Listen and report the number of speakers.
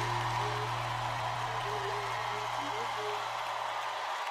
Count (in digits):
0